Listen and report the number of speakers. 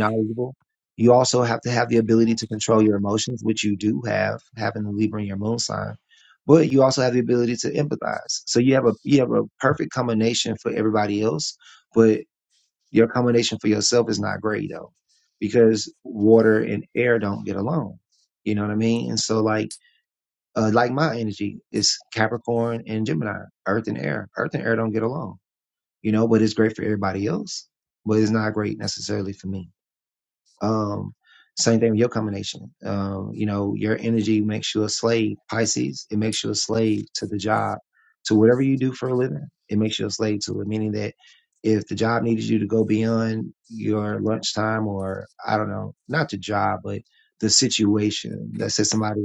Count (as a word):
one